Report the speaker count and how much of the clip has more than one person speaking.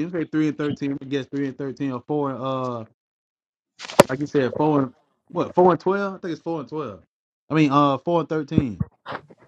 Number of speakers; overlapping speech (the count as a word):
one, no overlap